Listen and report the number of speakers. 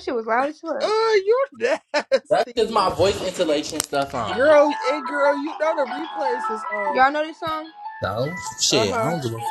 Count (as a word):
three